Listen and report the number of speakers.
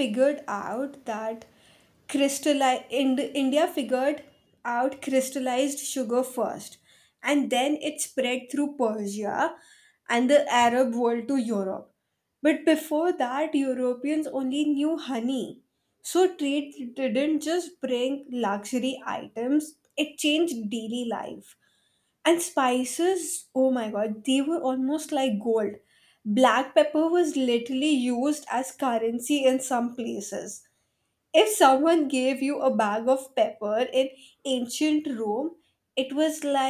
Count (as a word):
one